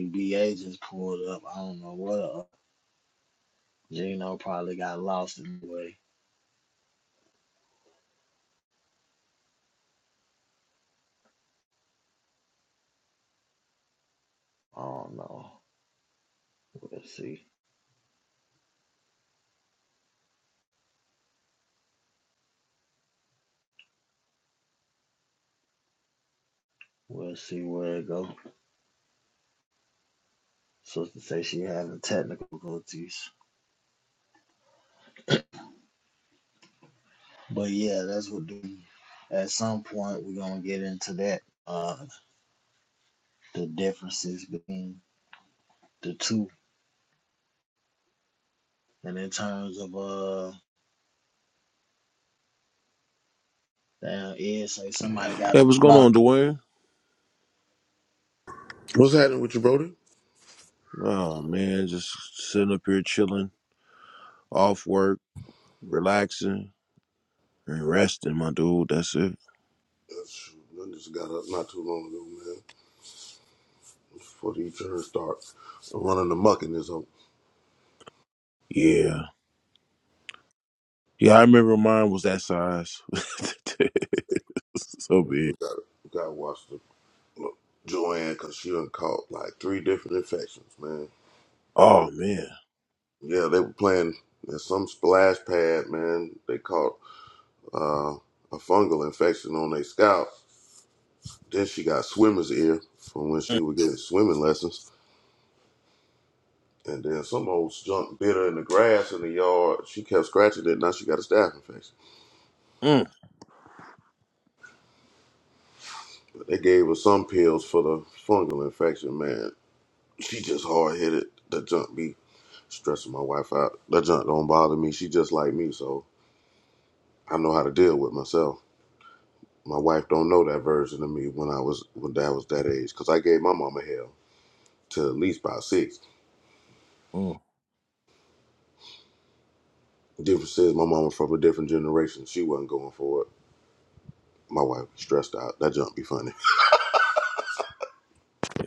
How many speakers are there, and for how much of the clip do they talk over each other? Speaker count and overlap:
3, about 1%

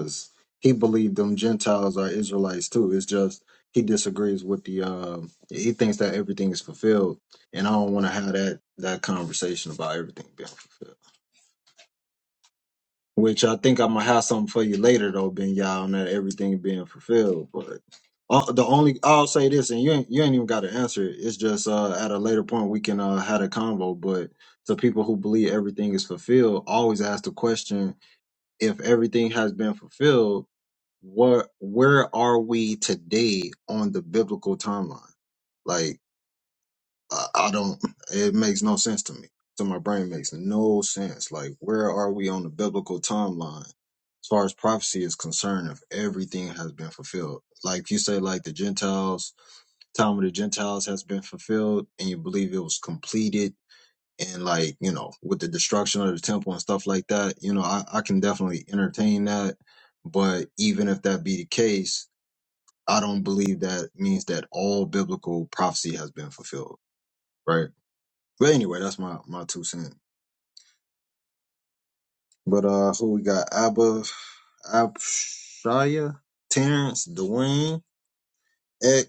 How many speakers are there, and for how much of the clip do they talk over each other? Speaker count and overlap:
1, no overlap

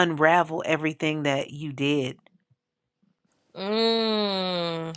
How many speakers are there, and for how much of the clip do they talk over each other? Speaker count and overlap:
2, no overlap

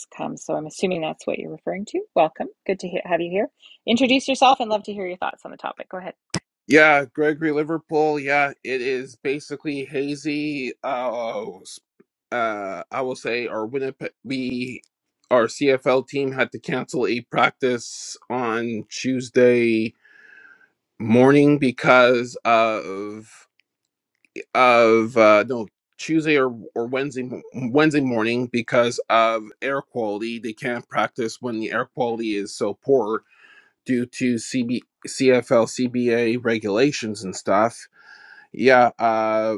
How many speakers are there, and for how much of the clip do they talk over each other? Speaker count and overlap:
2, no overlap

